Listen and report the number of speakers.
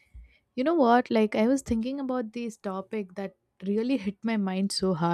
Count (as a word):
one